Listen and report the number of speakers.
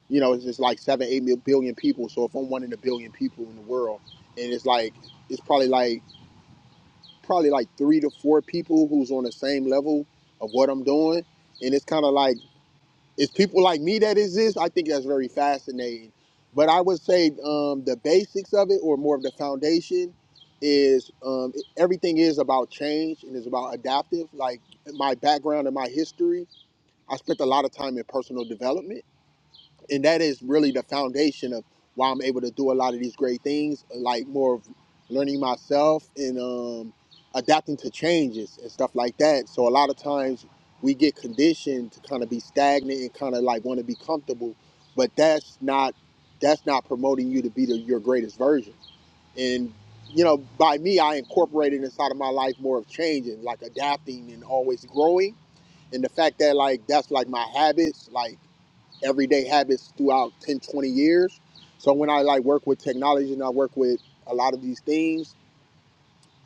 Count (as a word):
one